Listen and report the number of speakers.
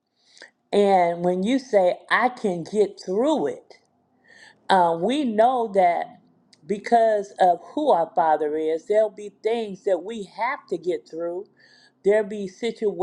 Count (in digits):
1